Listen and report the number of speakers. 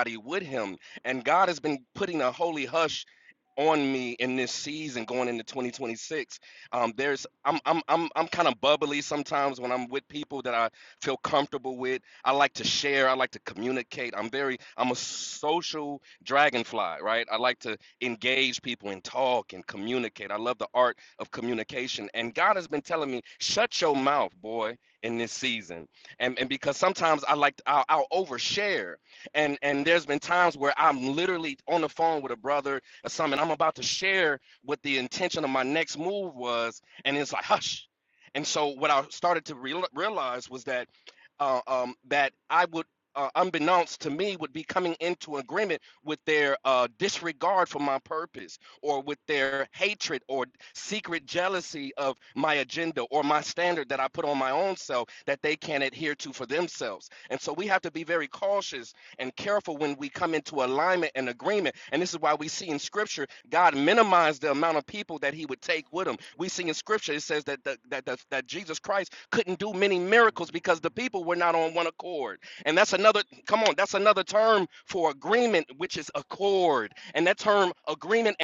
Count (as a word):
one